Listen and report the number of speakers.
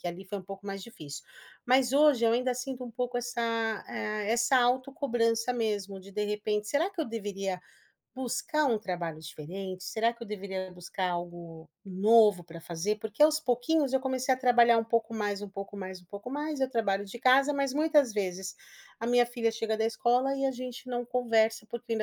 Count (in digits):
1